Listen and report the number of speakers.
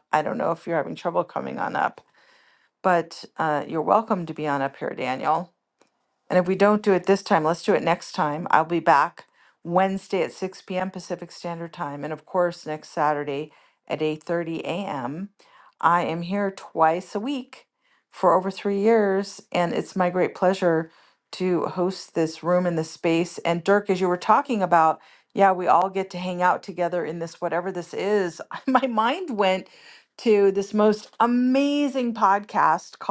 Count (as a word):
one